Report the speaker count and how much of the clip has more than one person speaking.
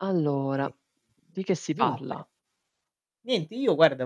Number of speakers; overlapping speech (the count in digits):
2, about 15%